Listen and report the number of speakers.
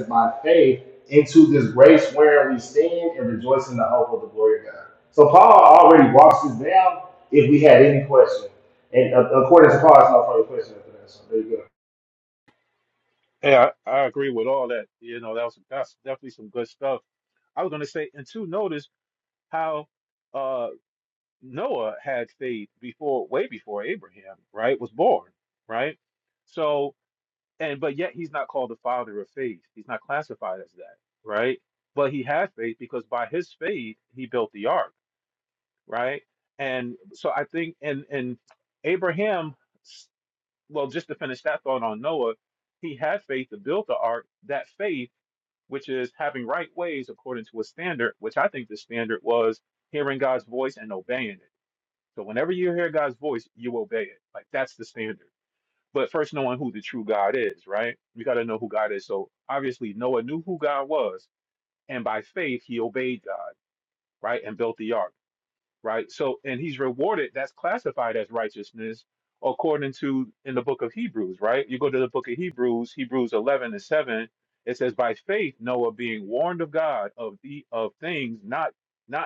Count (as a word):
two